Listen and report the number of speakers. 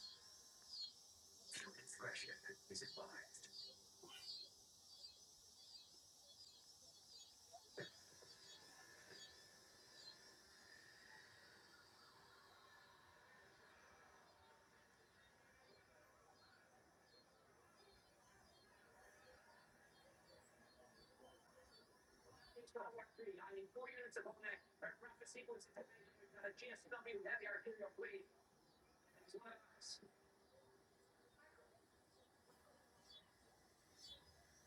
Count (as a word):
zero